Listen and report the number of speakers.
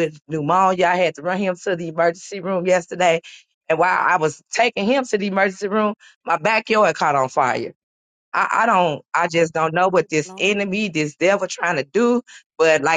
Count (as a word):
one